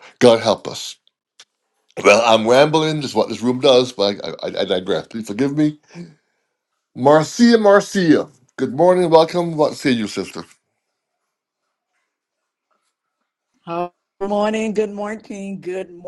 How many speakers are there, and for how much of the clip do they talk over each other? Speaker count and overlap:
2, no overlap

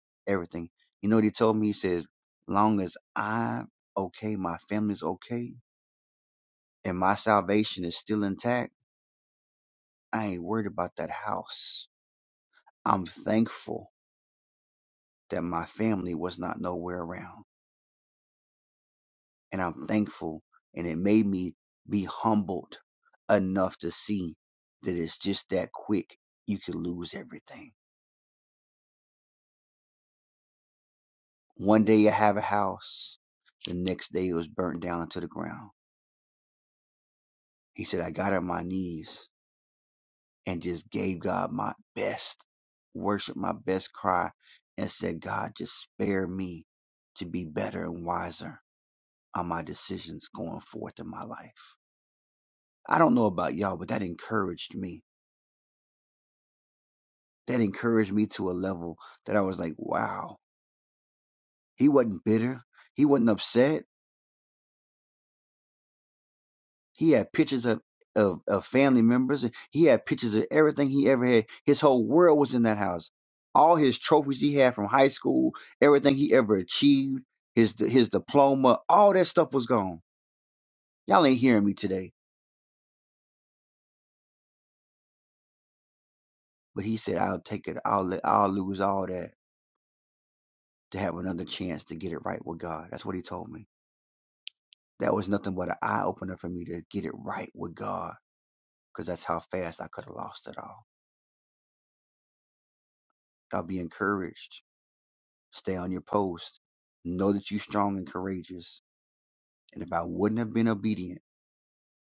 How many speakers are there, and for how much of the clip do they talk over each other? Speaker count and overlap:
1, no overlap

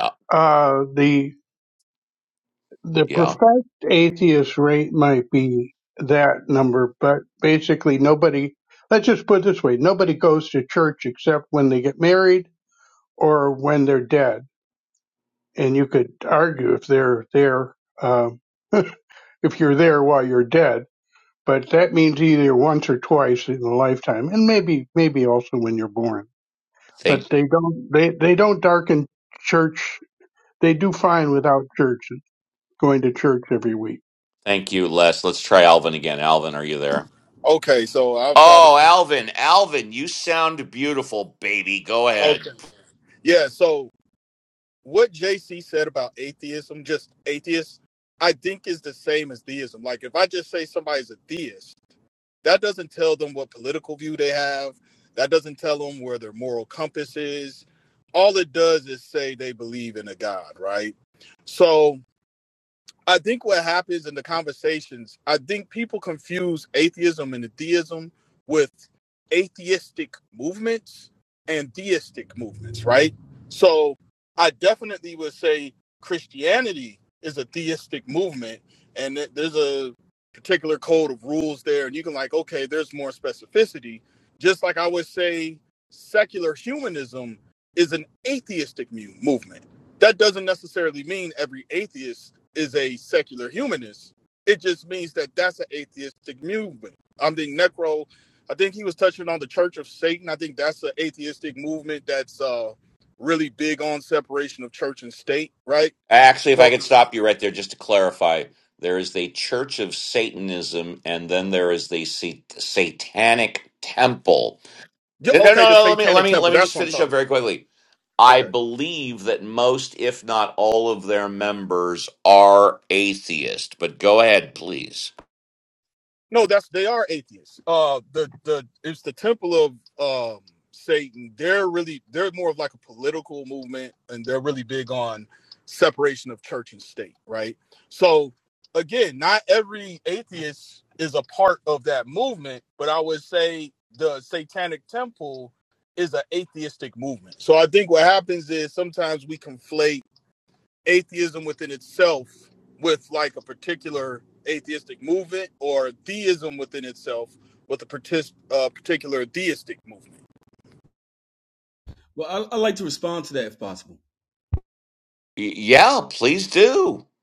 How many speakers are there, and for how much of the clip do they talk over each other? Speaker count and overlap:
4, about 2%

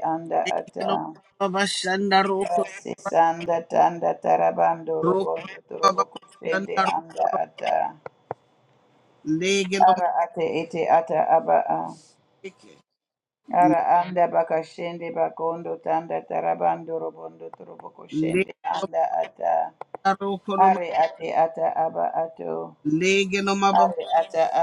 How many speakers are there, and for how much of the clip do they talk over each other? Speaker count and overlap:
2, about 10%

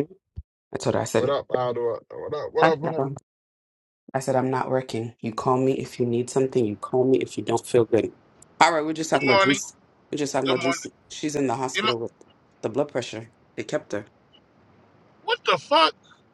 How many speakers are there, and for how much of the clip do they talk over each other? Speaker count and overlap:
3, about 10%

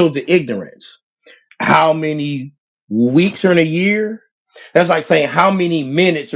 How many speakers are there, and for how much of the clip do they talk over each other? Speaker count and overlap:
1, no overlap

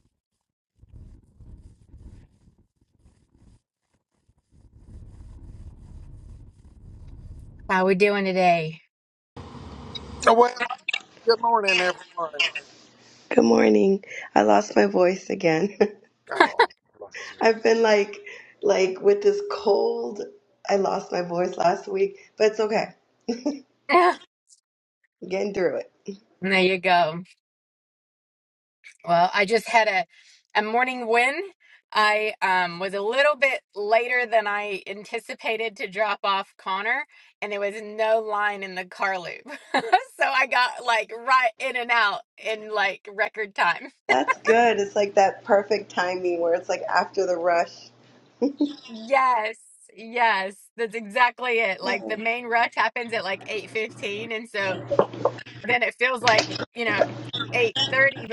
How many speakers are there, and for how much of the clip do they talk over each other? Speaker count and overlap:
3, under 1%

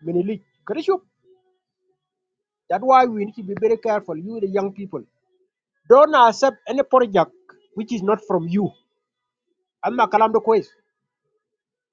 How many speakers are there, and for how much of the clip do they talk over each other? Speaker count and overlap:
1, no overlap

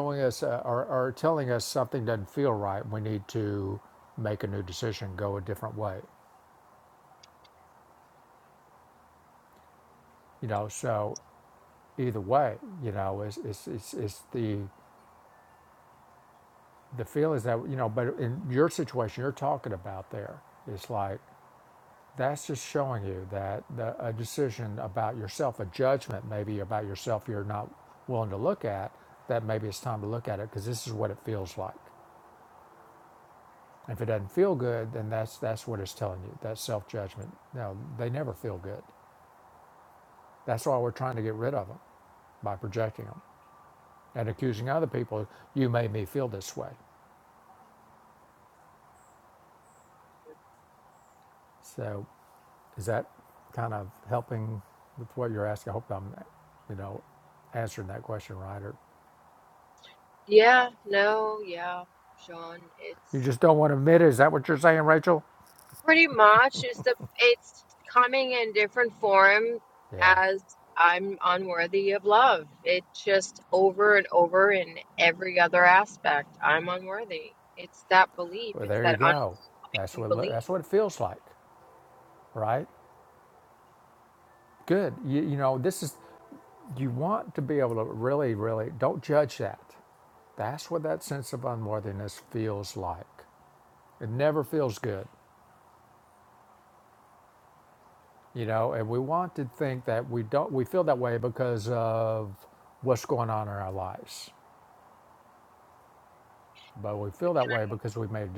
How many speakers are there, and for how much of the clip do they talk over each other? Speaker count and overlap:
2, about 1%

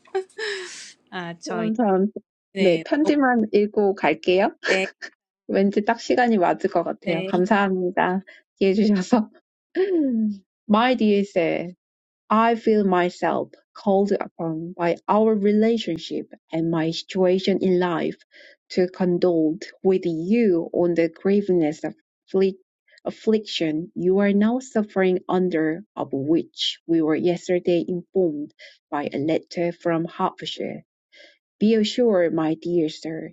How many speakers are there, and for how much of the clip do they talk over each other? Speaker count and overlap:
2, about 3%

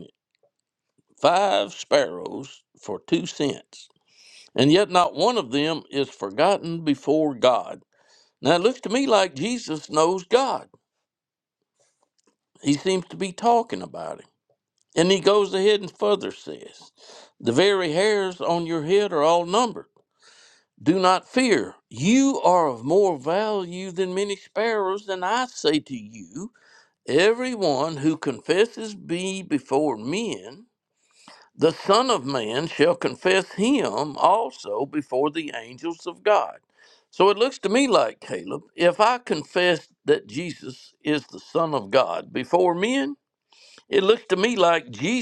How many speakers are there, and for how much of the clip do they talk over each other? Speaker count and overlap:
1, no overlap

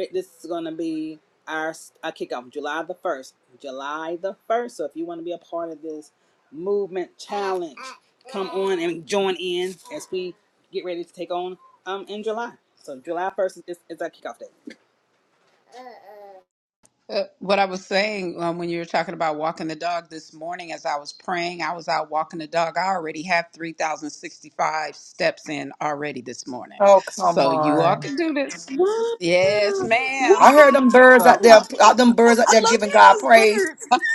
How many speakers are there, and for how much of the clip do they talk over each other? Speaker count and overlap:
4, about 7%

